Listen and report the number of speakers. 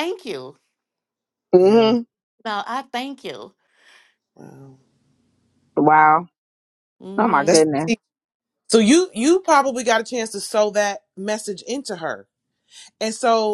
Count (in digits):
3